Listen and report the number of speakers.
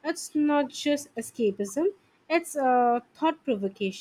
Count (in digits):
1